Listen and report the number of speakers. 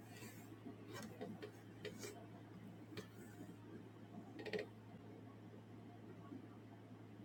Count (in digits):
0